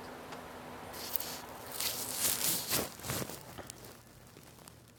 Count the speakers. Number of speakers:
0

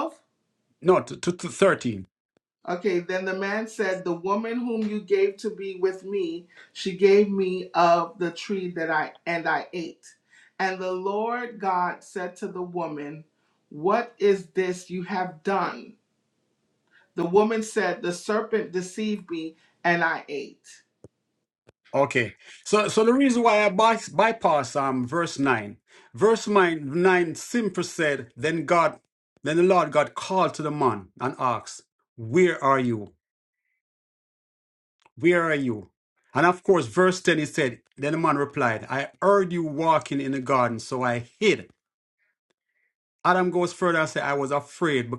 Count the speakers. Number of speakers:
2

